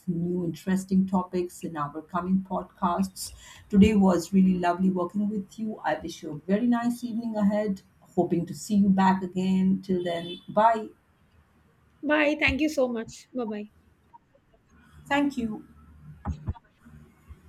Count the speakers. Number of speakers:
2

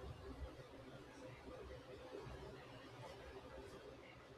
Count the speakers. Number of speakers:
0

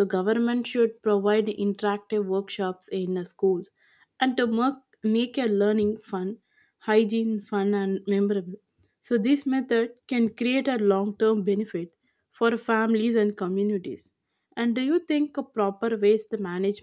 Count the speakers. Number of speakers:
1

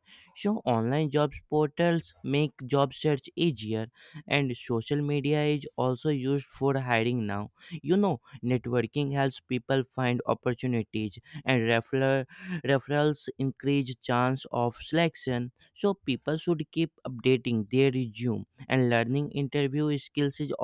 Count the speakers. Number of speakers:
1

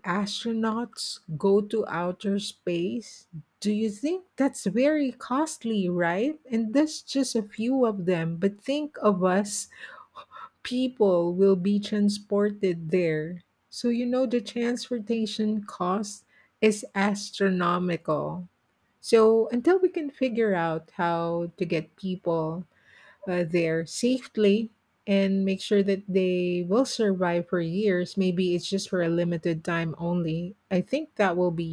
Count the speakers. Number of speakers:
1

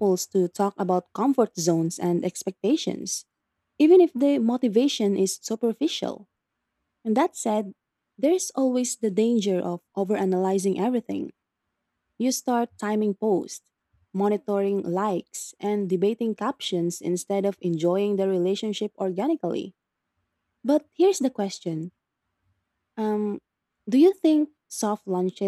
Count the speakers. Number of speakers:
1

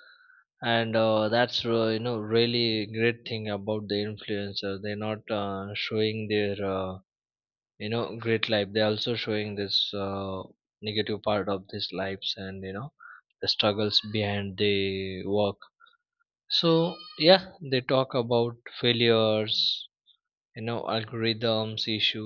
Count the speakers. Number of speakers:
1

